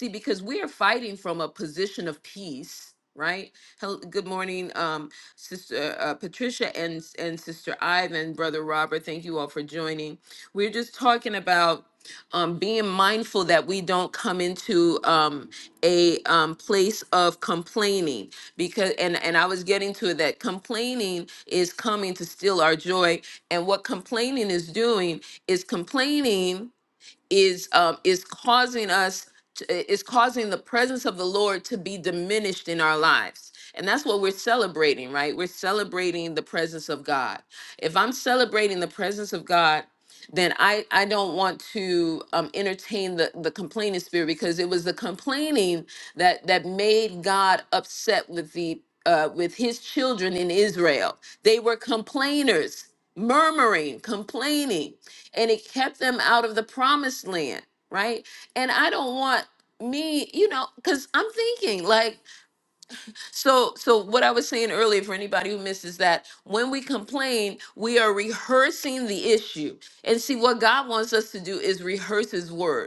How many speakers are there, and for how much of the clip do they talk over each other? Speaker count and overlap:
1, no overlap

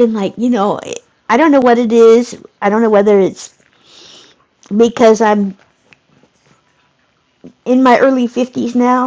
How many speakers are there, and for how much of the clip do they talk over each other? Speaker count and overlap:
1, no overlap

